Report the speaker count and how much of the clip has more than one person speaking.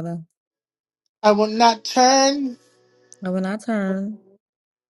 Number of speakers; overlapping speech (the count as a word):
two, no overlap